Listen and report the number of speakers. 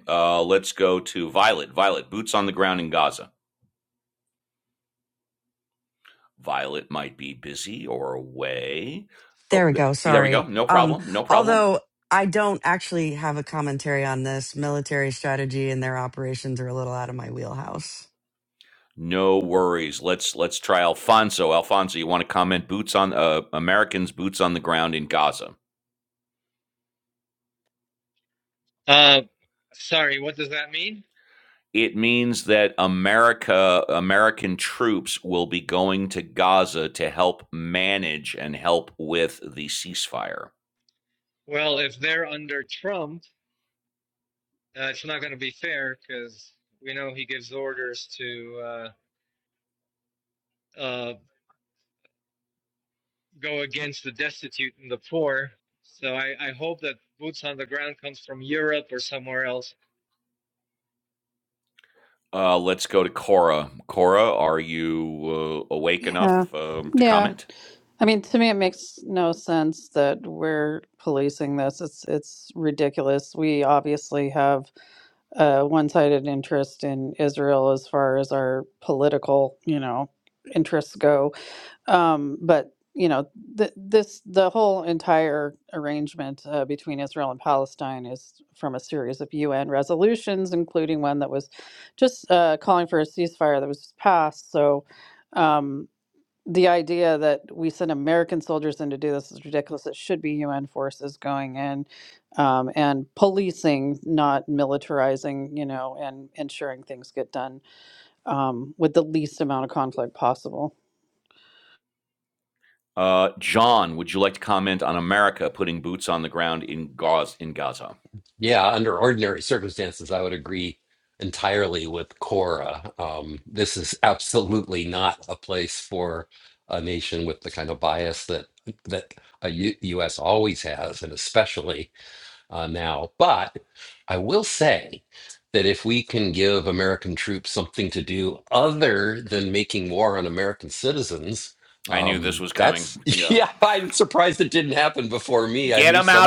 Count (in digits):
5